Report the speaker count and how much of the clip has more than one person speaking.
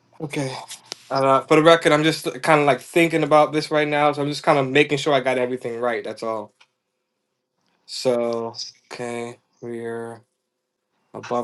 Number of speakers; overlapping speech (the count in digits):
1, no overlap